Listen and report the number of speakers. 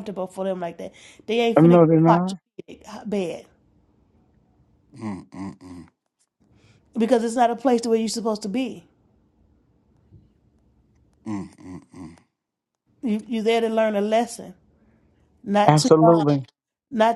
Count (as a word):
three